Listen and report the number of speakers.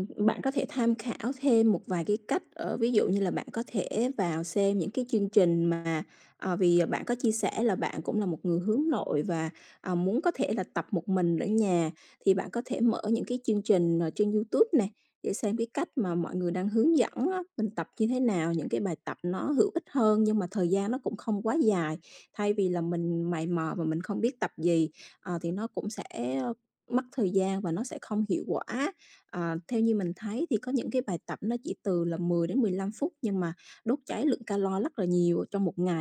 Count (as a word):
one